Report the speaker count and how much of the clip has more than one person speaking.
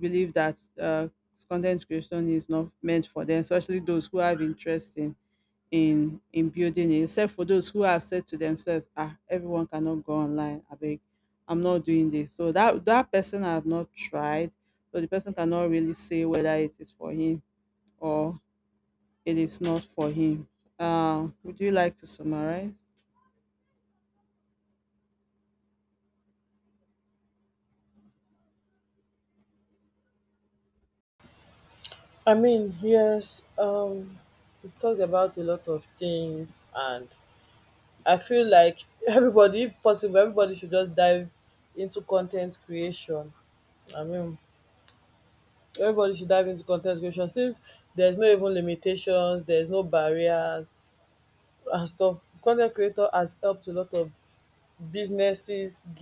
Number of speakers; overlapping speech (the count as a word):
two, no overlap